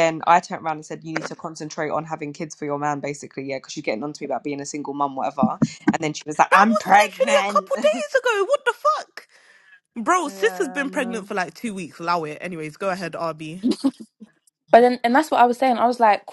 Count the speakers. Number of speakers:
three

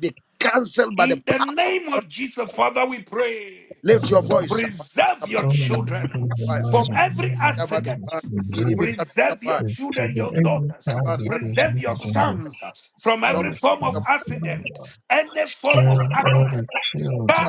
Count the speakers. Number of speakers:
three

